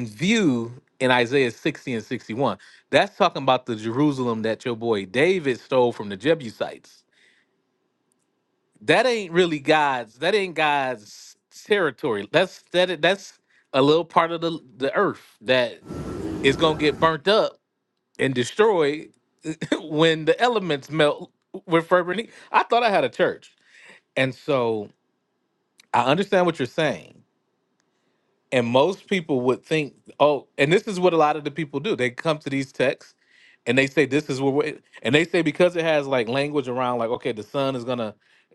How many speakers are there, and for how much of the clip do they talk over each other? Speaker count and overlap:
one, no overlap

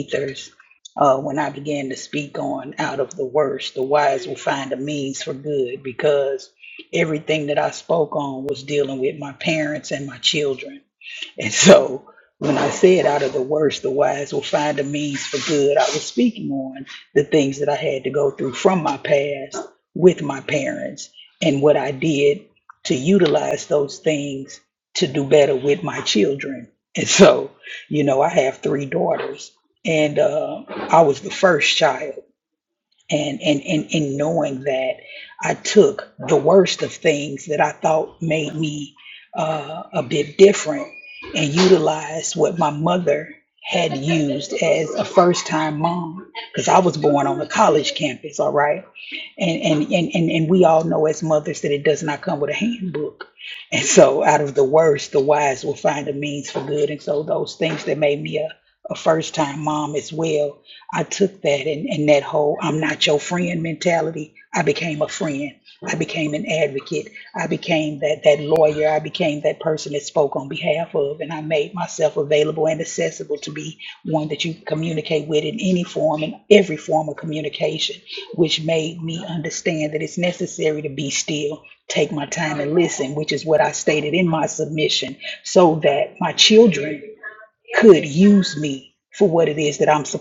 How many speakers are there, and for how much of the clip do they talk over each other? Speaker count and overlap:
one, no overlap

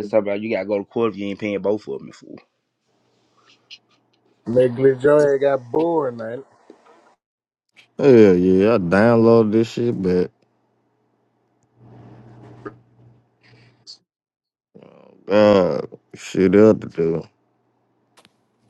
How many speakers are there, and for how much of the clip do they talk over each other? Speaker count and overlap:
three, no overlap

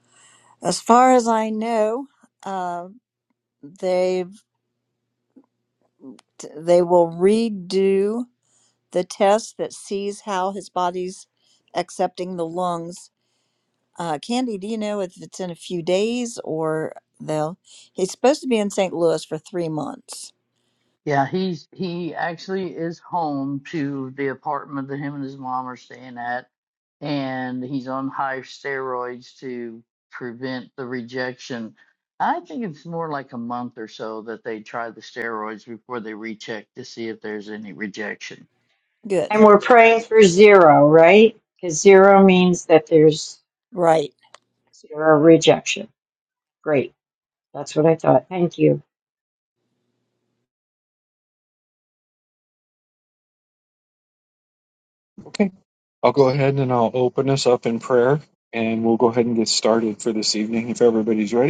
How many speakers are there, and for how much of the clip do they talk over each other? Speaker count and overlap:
four, under 1%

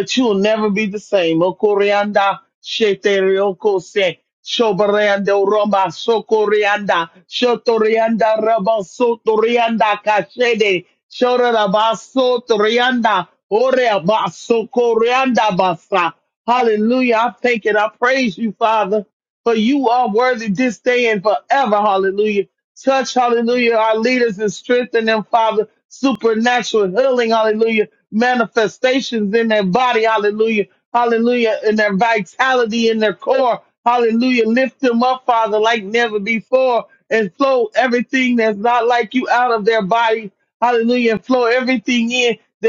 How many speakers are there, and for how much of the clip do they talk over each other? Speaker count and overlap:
one, no overlap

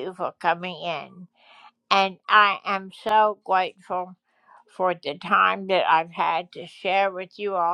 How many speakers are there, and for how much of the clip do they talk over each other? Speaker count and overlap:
one, no overlap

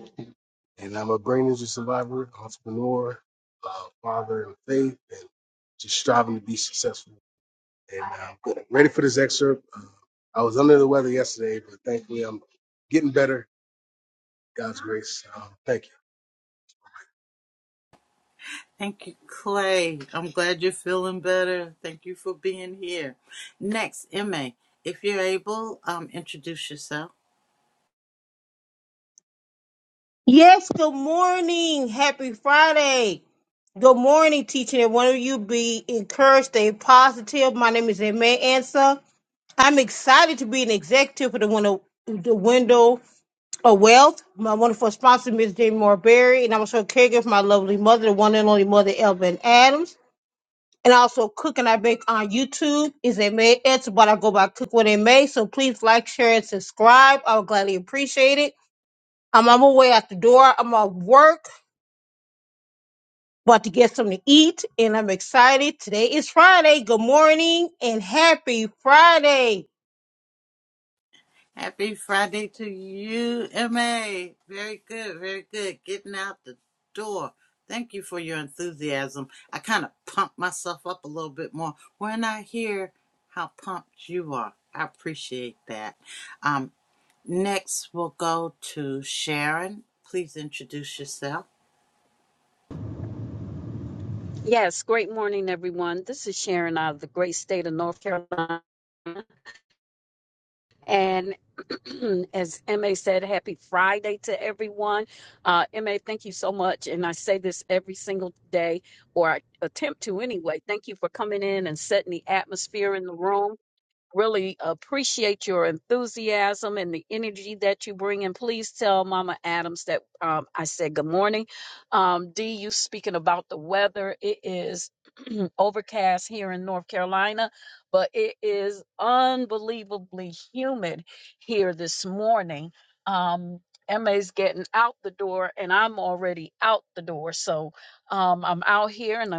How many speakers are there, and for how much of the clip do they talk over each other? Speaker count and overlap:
four, no overlap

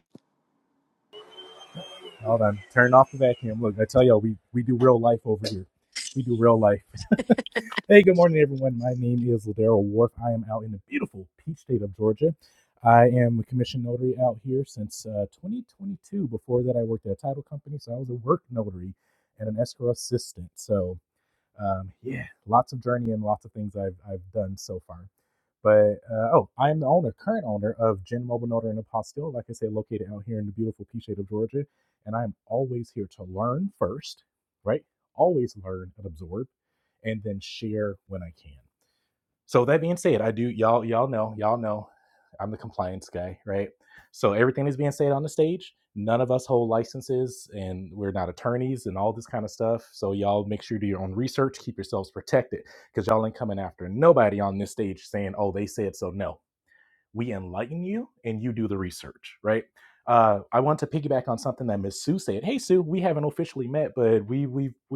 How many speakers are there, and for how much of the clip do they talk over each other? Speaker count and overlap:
one, no overlap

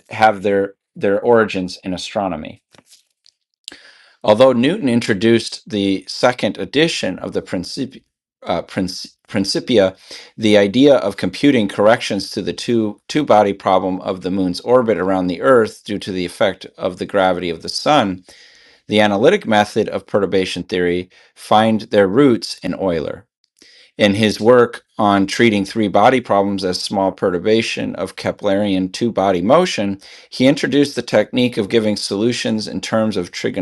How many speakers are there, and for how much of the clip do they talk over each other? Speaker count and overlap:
one, no overlap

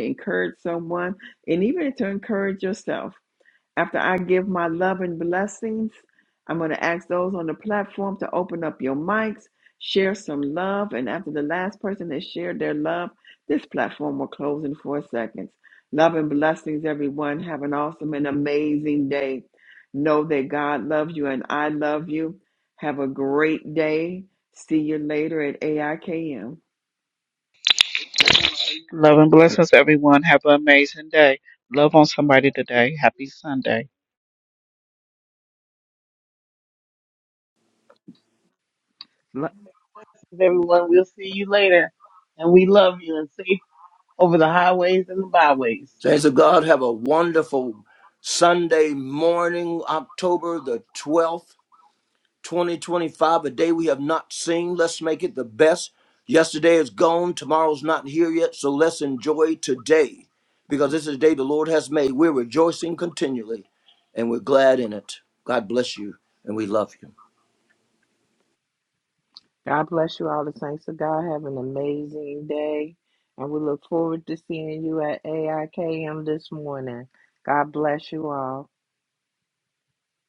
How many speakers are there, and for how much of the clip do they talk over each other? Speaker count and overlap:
five, no overlap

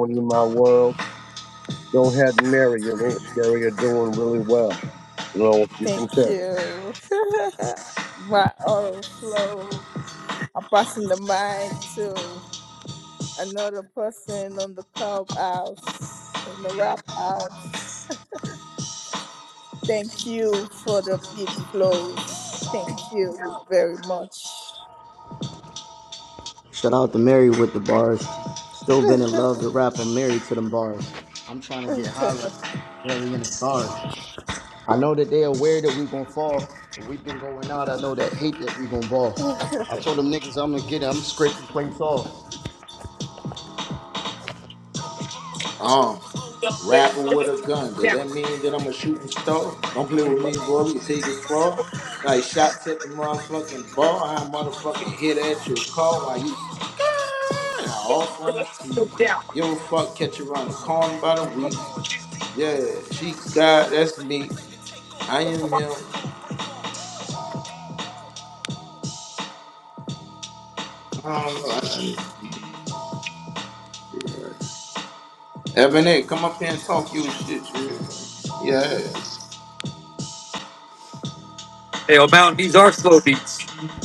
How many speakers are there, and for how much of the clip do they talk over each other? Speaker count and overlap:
five, about 1%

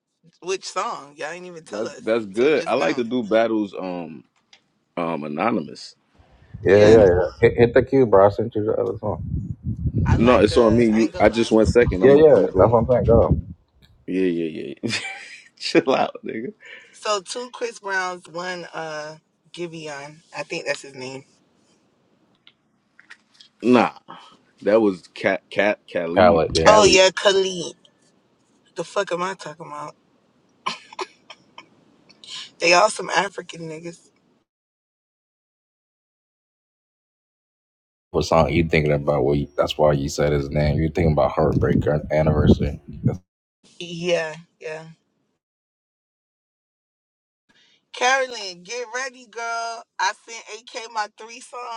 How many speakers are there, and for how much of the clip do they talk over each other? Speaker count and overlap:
three, about 9%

